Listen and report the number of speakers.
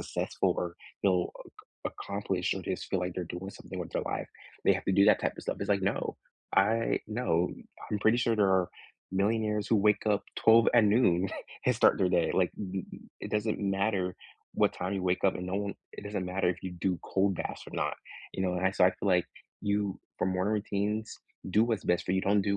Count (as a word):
one